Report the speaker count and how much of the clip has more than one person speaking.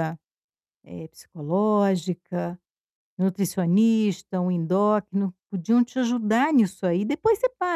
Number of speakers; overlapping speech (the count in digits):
1, no overlap